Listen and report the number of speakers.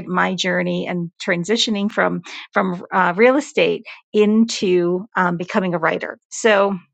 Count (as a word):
one